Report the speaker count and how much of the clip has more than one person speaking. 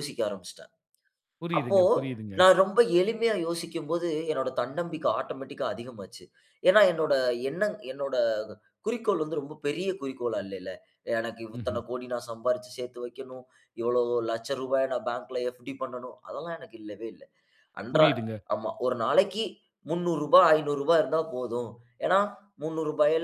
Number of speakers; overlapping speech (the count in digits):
2, about 3%